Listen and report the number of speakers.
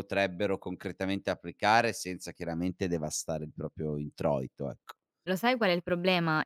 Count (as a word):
two